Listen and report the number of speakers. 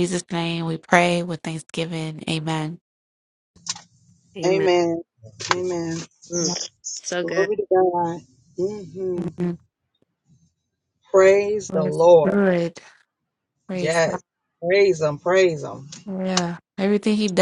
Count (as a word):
three